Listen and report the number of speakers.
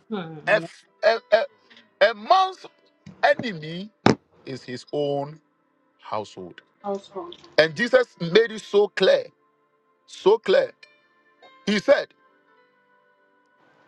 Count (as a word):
two